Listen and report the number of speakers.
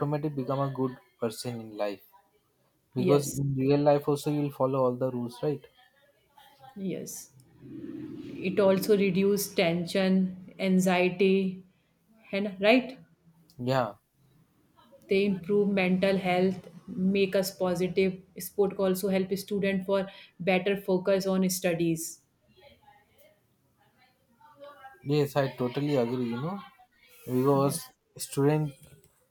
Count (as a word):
two